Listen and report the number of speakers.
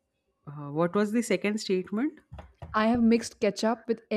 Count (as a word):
two